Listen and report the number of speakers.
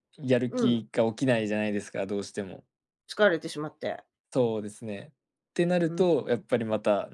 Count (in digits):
2